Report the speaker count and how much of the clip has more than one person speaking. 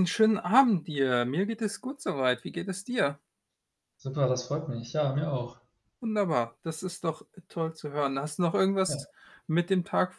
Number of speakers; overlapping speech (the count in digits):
2, under 1%